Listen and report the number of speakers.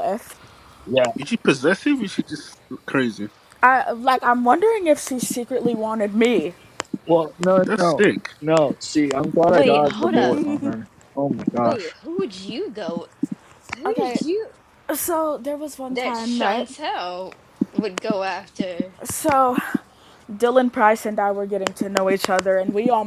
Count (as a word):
four